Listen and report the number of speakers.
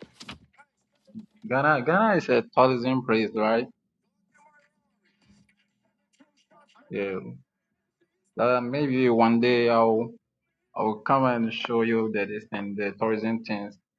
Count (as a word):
one